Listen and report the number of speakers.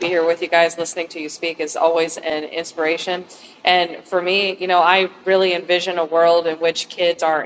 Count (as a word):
one